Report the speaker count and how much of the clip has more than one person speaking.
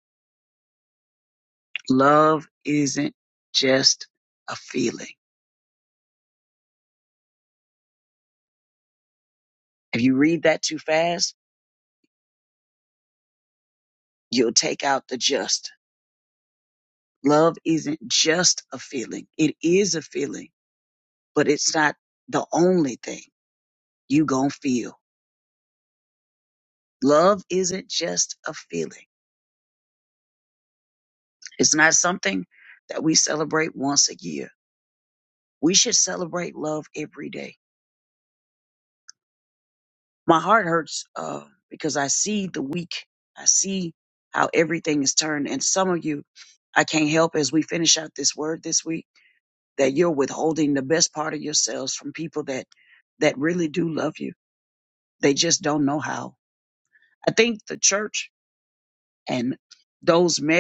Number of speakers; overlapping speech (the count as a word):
one, no overlap